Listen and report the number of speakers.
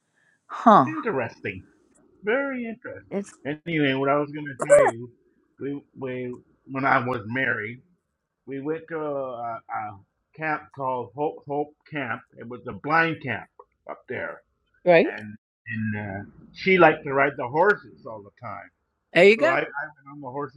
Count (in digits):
2